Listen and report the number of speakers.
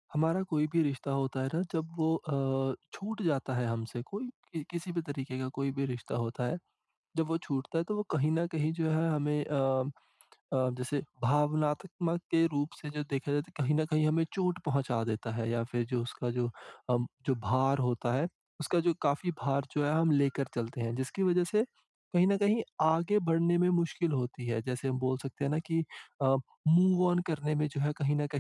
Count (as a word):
one